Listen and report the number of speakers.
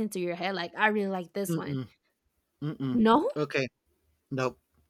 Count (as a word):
two